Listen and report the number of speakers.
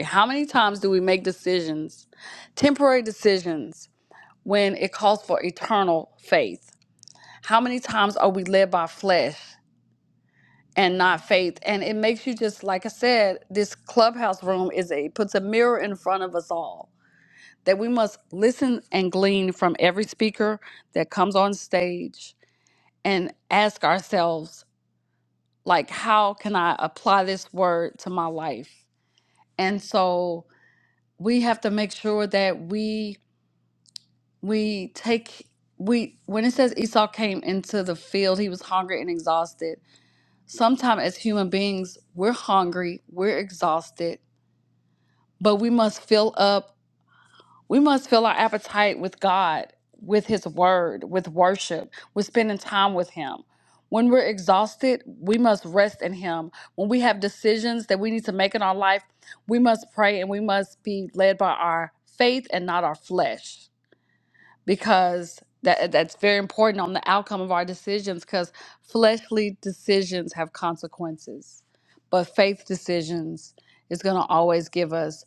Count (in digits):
1